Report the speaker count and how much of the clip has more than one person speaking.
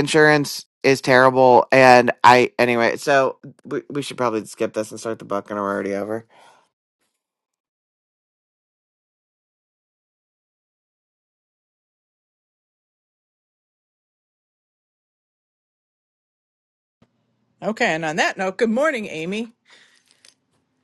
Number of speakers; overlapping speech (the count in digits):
2, no overlap